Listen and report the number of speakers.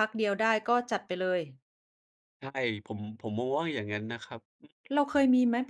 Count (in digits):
2